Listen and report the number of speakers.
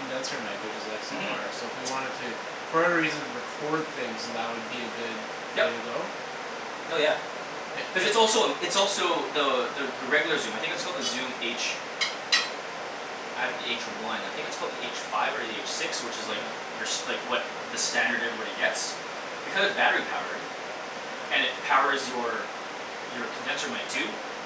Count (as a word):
two